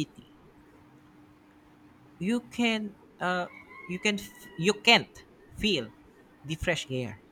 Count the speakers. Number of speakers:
1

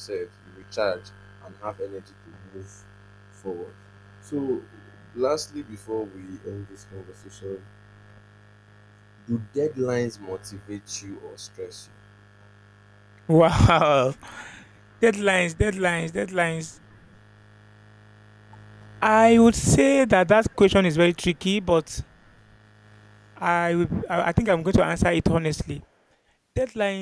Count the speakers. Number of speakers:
2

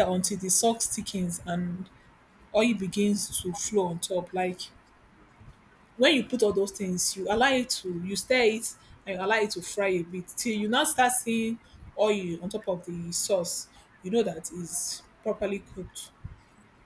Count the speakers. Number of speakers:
1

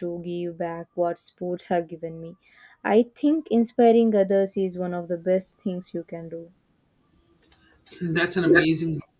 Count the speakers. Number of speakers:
2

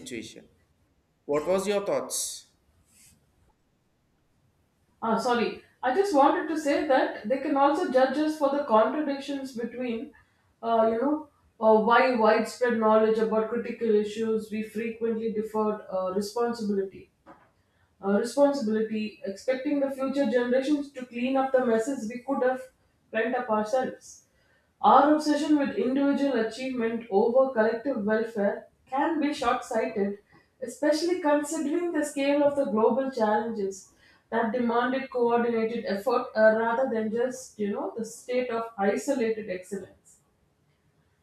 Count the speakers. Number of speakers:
2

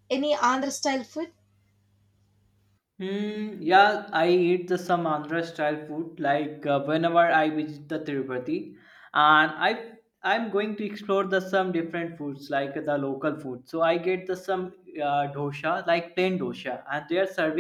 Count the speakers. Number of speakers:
2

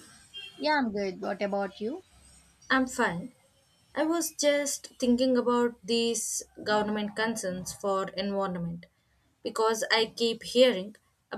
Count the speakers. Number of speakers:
2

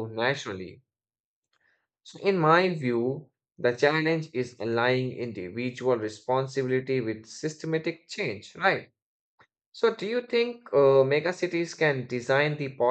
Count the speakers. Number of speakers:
1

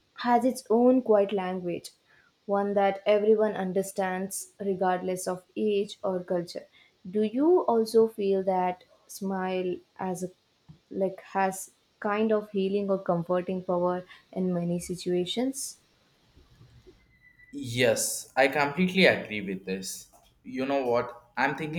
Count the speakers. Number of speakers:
2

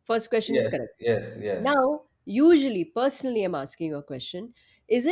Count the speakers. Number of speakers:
2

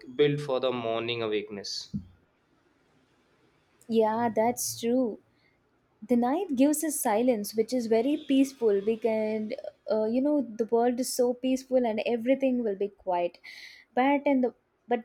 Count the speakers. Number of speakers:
2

